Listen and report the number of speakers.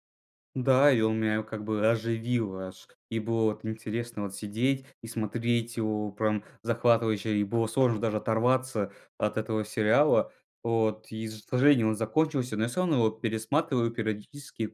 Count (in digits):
1